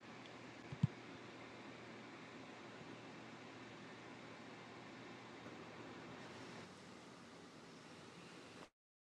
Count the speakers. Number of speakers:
0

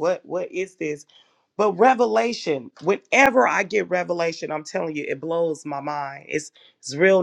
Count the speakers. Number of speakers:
1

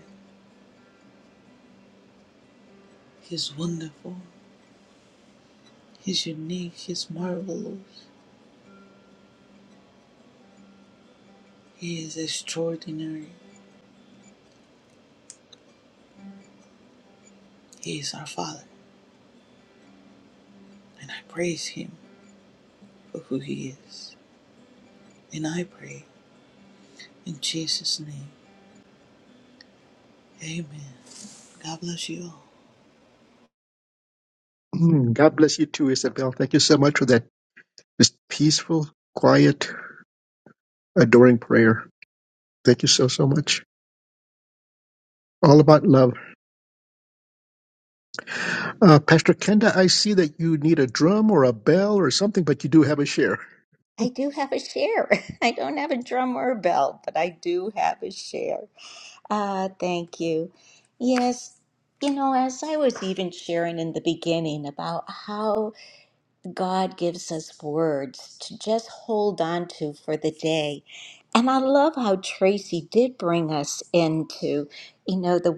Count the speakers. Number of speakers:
3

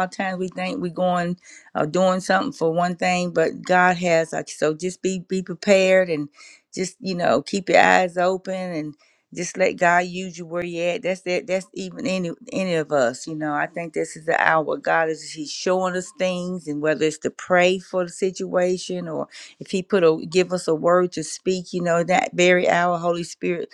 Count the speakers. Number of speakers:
1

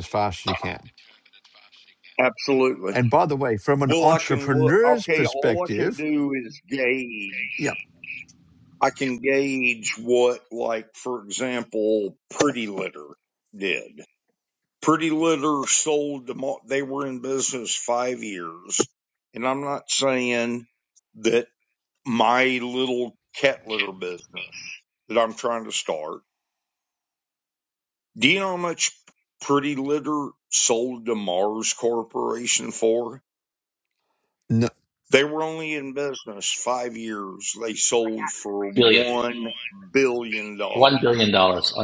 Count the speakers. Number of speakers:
3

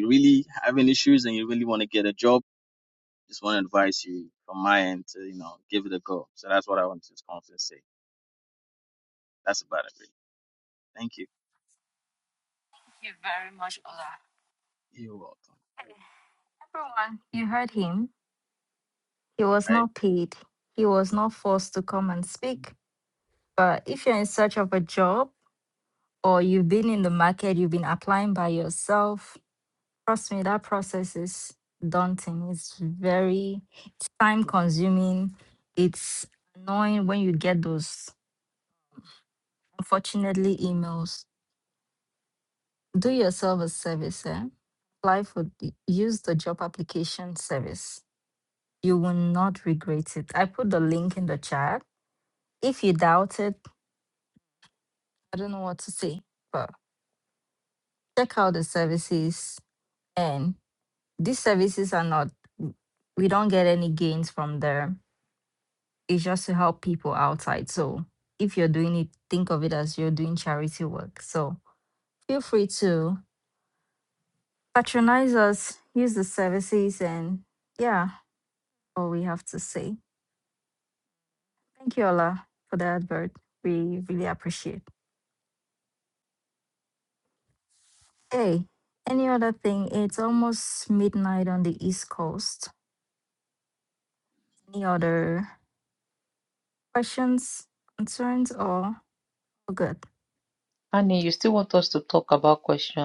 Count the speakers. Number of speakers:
3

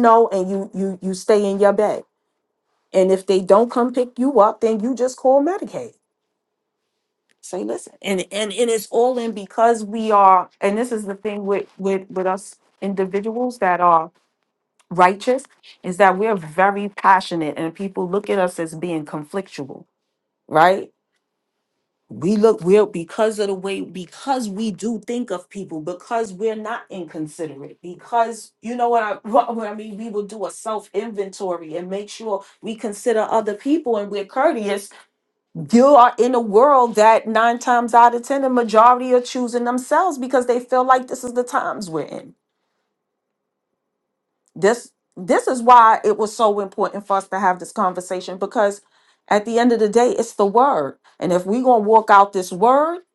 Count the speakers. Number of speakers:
1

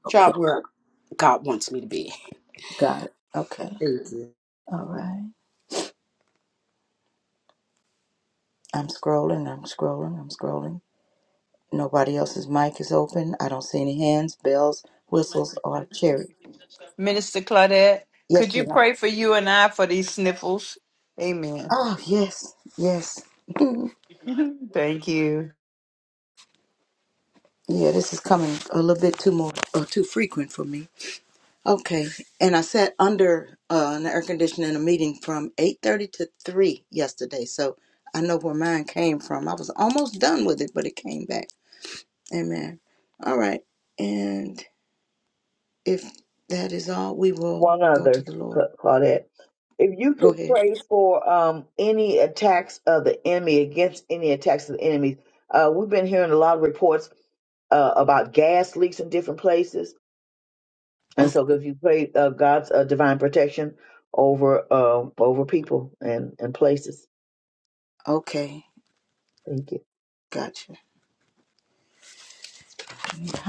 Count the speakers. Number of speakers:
4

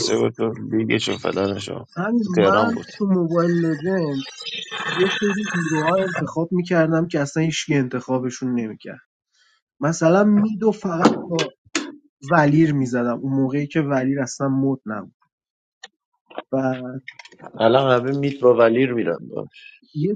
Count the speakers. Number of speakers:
3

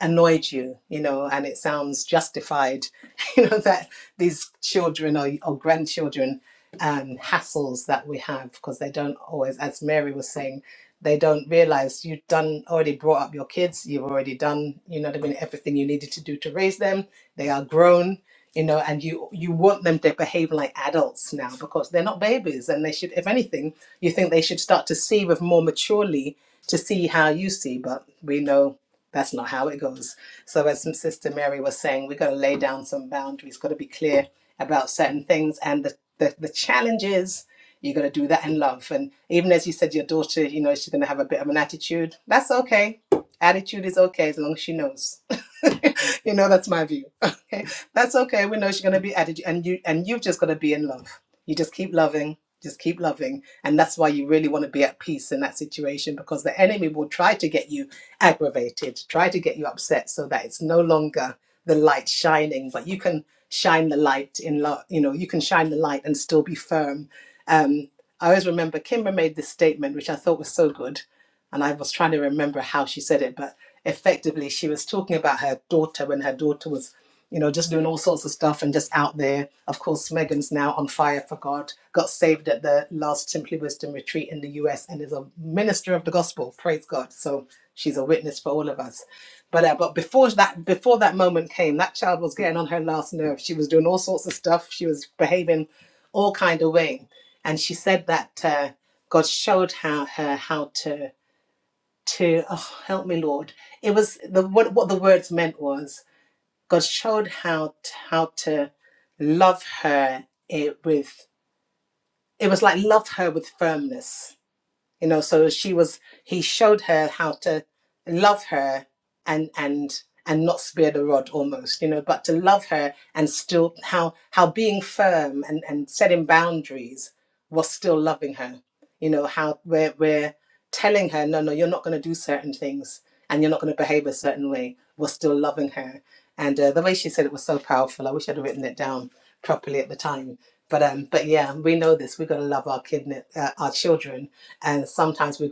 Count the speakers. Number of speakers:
1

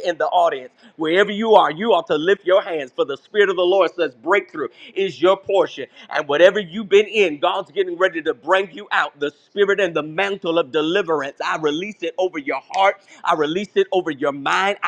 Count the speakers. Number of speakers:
1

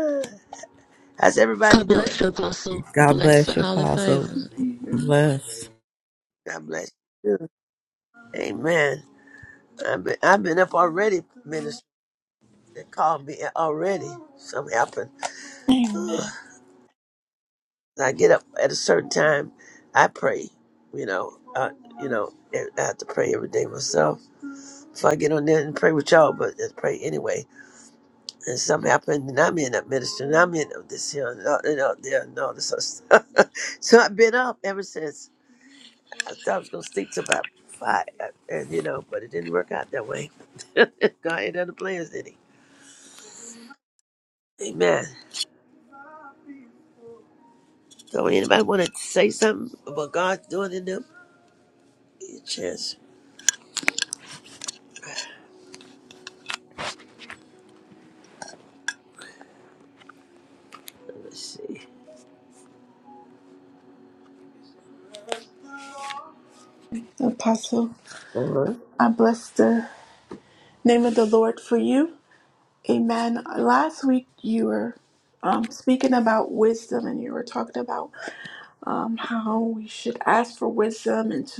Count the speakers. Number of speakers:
4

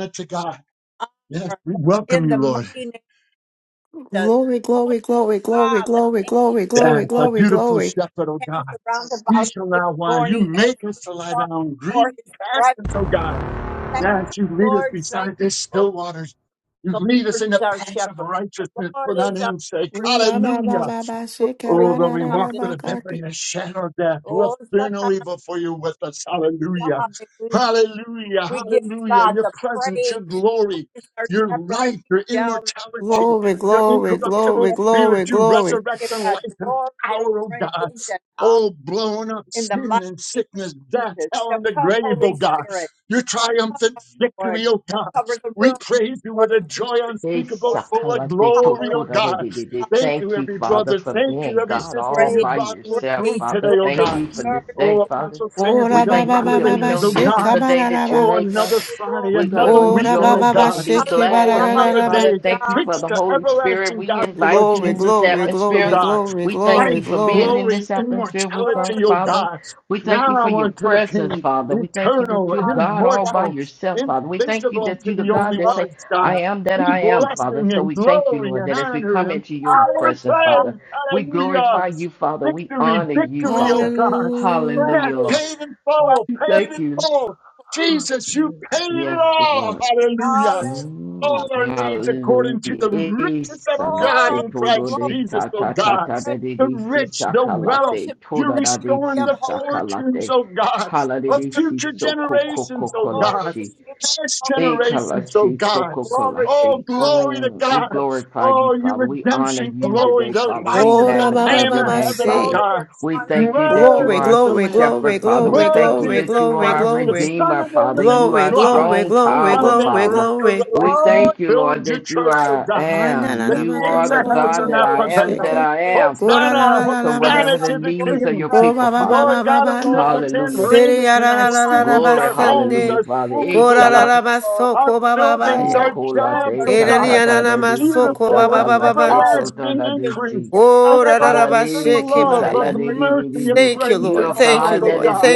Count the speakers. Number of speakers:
4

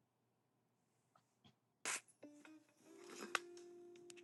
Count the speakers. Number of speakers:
0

